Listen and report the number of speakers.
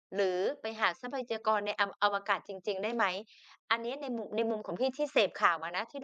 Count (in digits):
1